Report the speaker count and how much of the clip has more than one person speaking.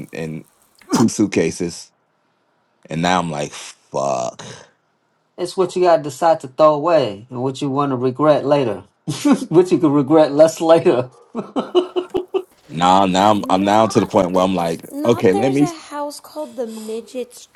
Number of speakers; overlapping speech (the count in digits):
3, about 12%